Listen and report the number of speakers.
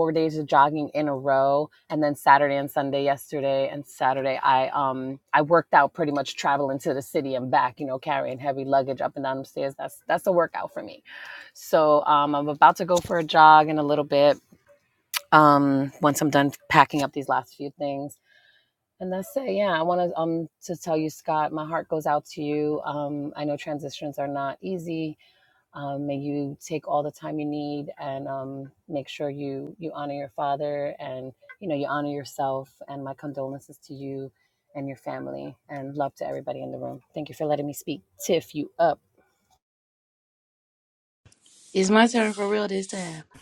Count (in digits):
2